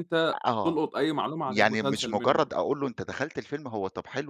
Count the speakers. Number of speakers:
two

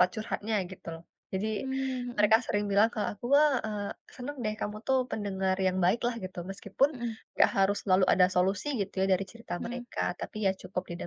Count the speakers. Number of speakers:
two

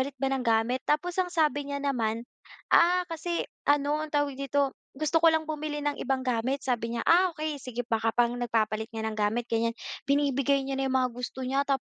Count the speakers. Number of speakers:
one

